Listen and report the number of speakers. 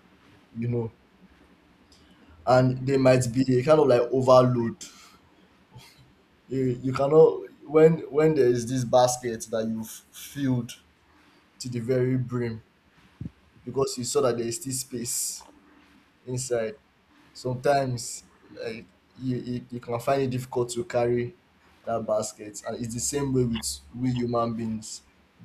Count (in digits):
1